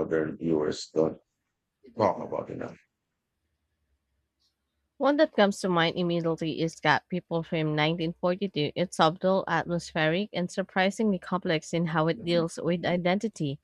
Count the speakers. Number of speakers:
two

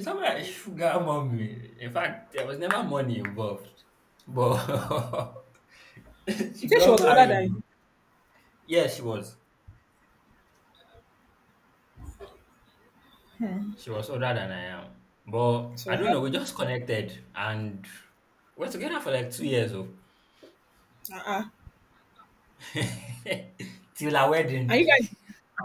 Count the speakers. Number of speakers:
two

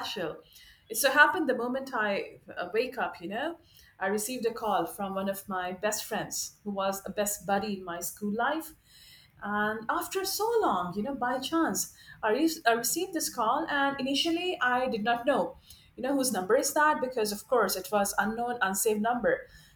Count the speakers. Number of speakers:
one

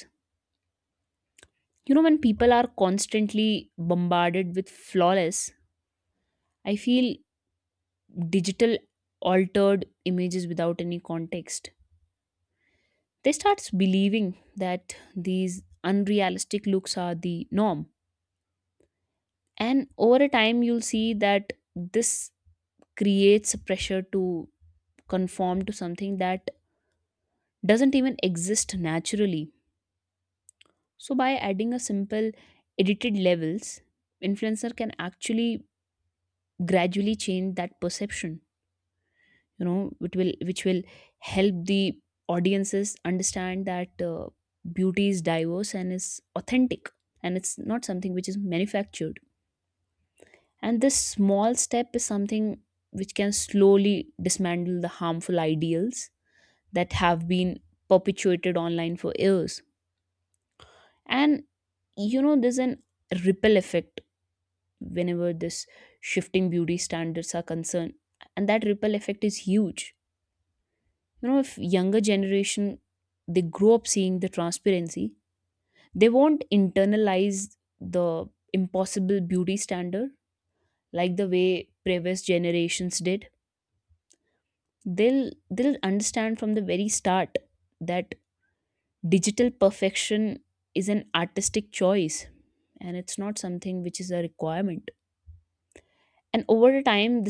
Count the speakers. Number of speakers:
one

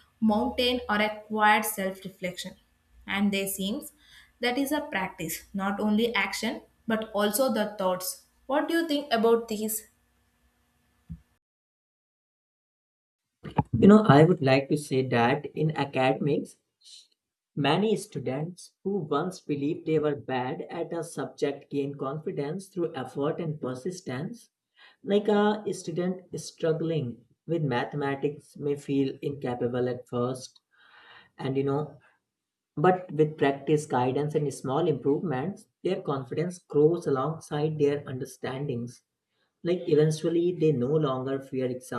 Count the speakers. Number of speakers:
two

